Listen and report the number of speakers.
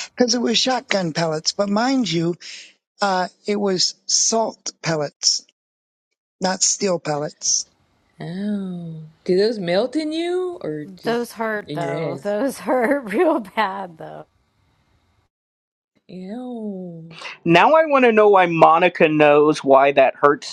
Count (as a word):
four